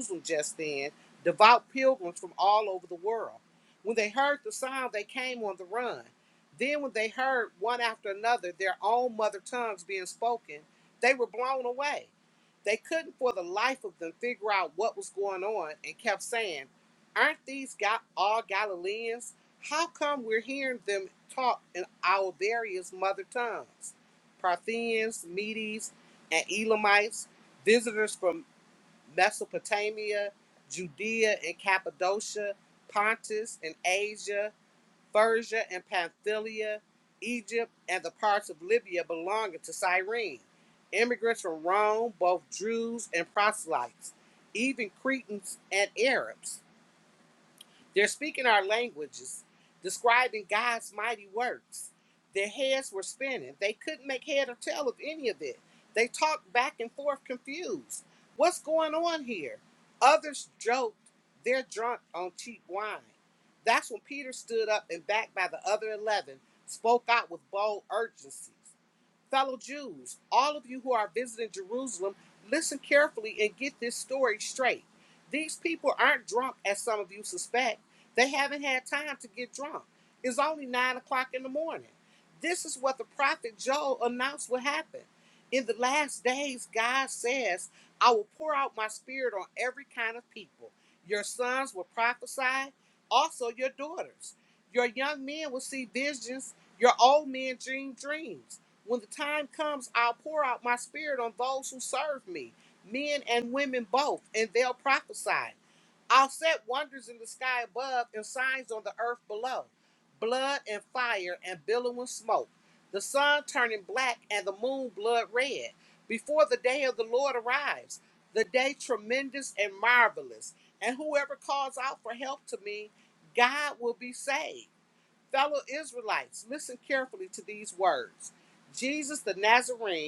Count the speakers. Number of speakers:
1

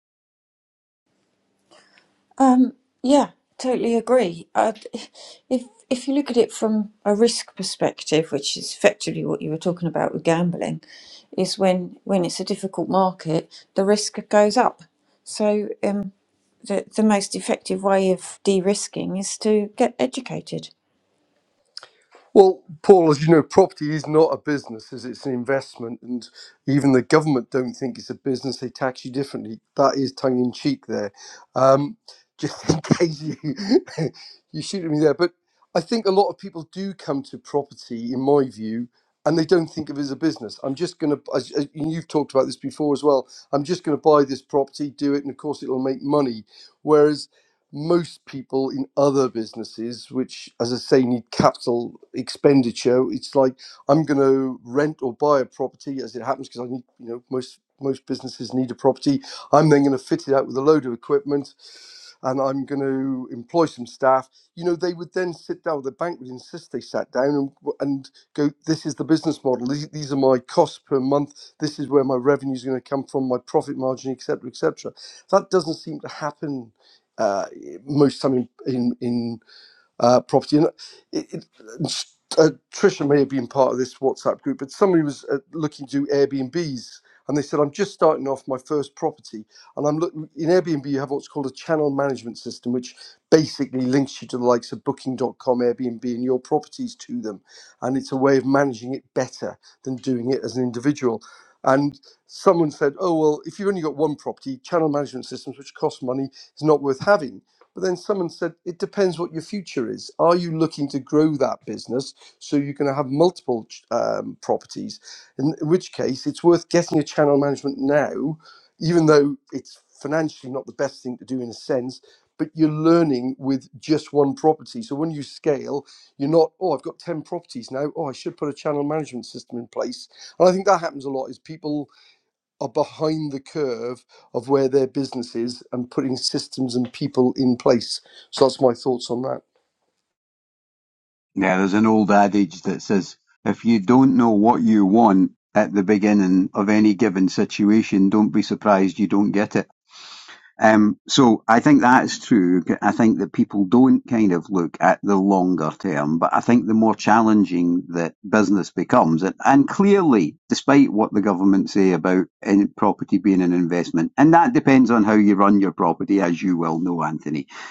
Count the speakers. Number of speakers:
3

